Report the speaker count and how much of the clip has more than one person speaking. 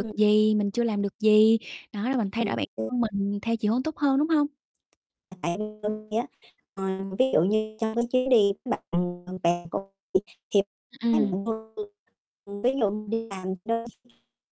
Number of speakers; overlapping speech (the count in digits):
2, about 3%